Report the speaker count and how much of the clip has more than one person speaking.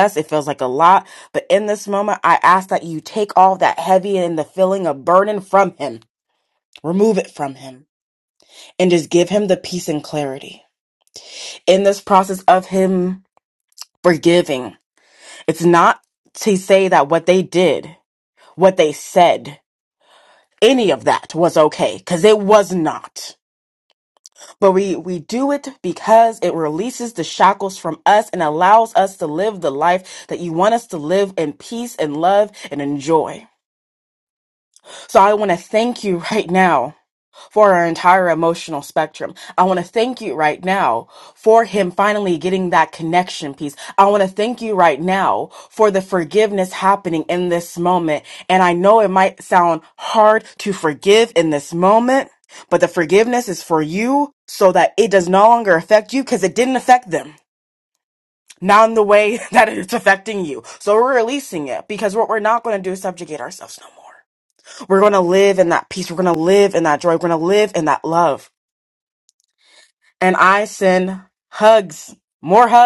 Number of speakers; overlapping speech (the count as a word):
one, no overlap